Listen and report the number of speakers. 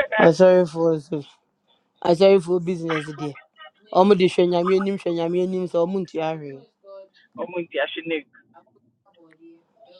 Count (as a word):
two